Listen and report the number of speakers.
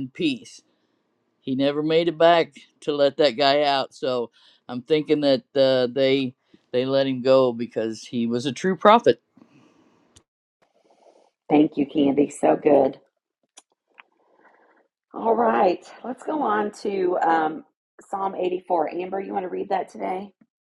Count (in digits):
2